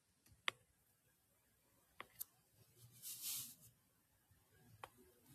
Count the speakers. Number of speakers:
0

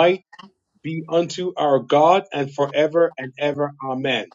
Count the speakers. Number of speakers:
1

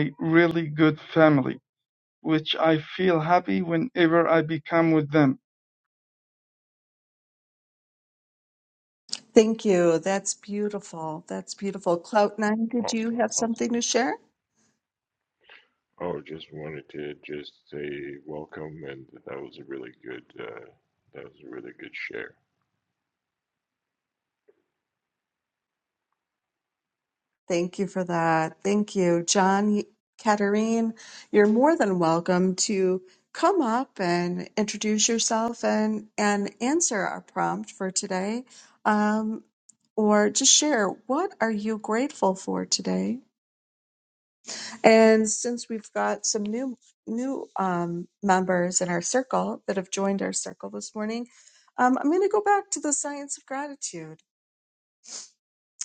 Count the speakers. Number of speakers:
3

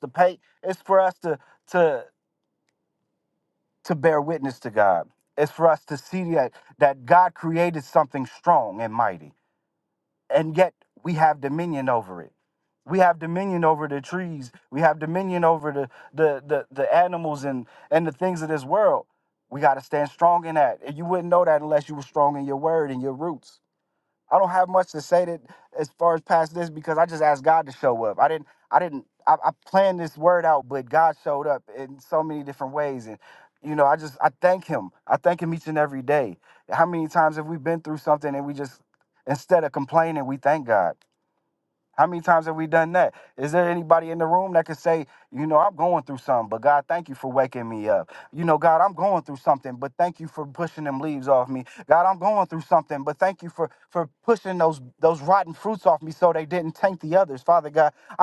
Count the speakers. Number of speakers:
1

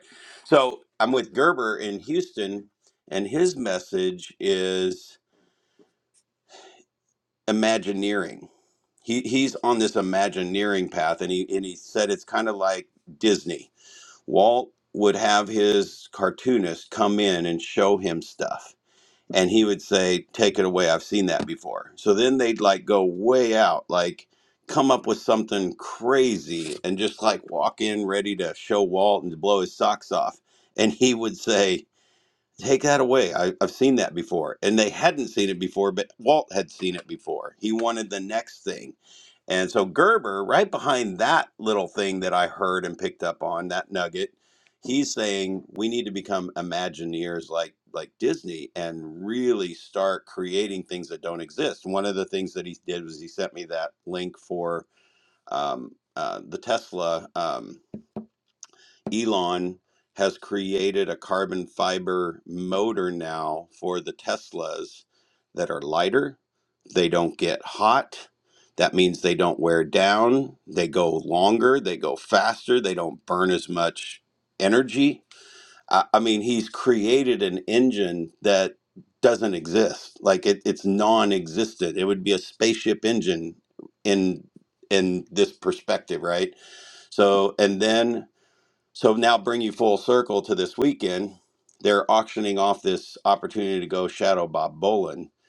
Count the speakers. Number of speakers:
1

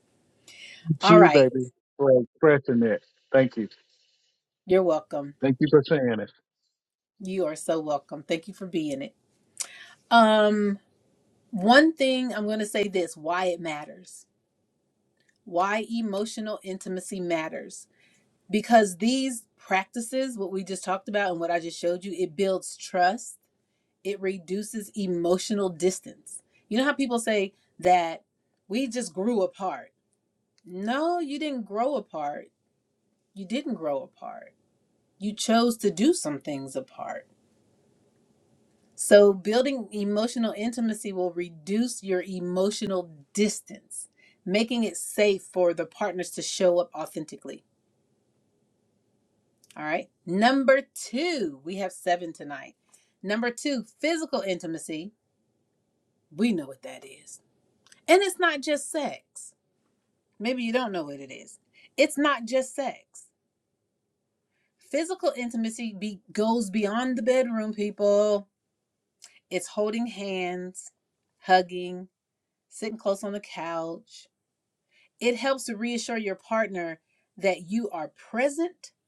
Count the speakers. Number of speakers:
2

